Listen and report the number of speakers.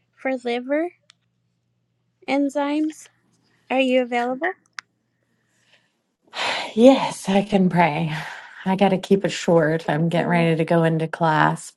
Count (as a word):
two